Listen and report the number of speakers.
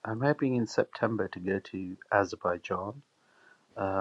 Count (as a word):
one